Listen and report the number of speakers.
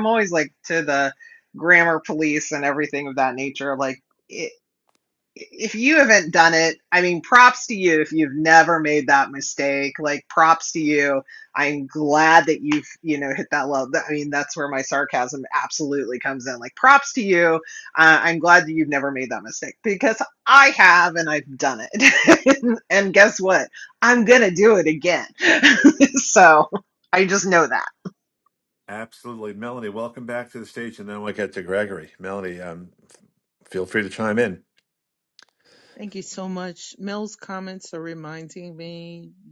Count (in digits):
3